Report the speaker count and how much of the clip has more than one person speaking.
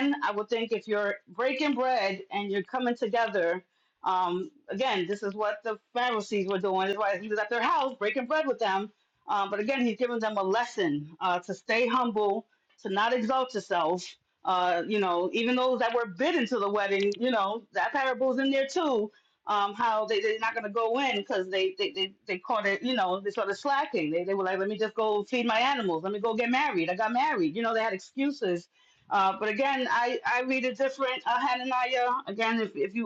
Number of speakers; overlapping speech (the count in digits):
1, no overlap